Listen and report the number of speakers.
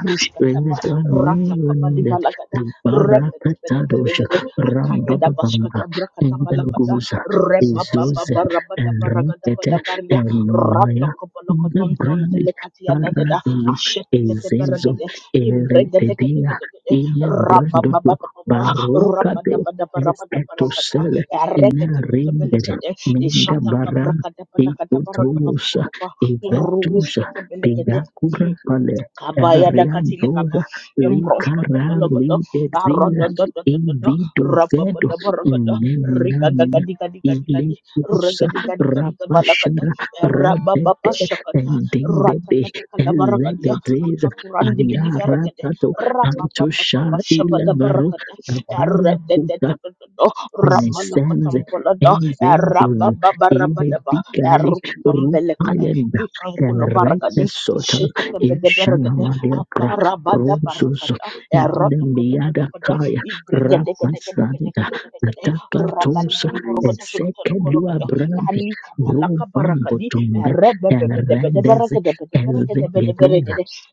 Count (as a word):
two